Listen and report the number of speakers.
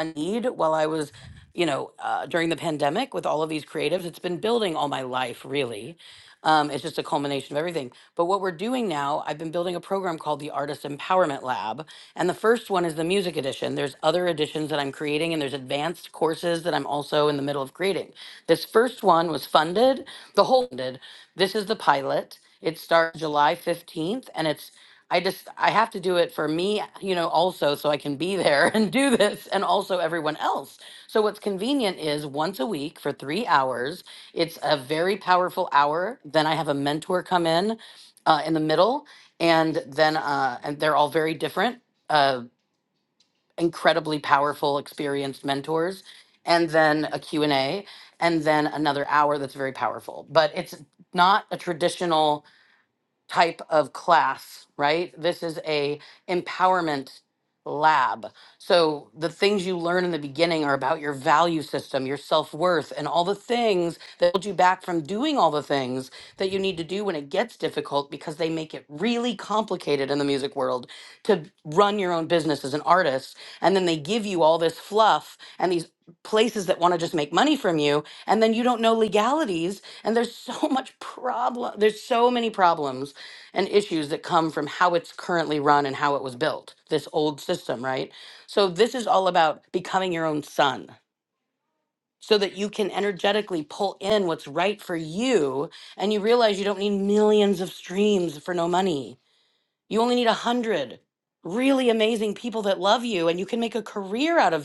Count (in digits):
1